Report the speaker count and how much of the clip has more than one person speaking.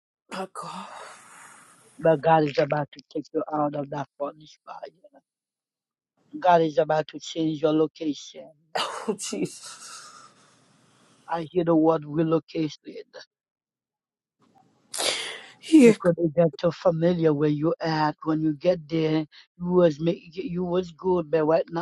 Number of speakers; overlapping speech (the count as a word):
two, under 1%